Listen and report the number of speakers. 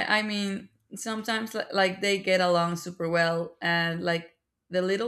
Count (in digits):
1